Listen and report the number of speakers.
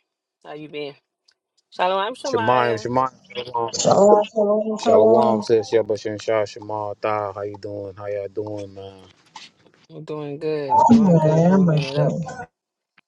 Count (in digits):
3